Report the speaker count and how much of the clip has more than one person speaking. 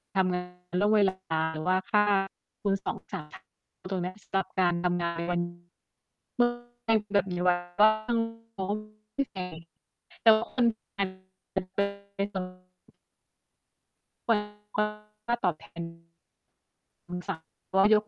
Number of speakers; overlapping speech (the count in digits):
1, no overlap